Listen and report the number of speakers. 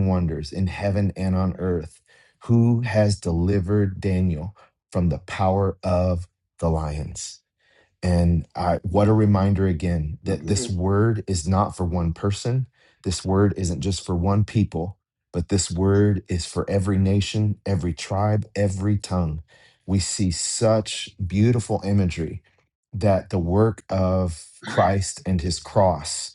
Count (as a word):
one